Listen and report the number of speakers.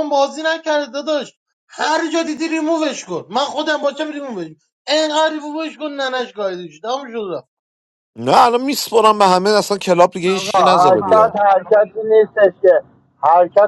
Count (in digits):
3